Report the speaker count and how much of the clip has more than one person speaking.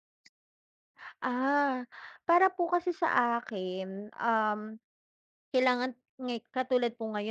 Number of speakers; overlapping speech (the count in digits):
1, no overlap